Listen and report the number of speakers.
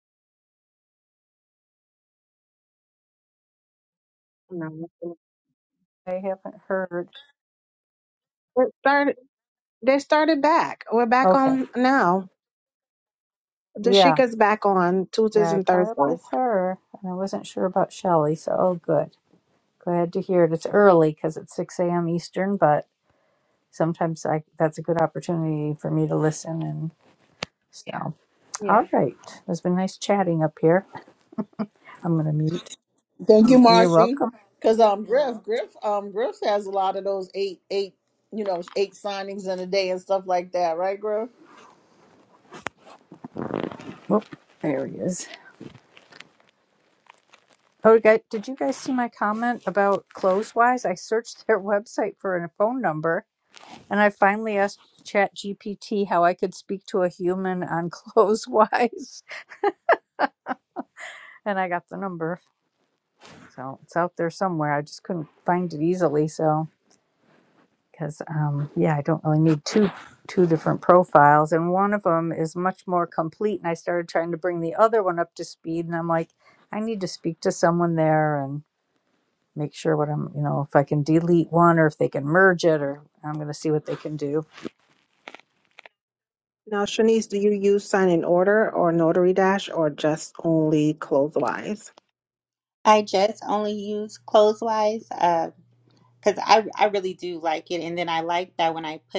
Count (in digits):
4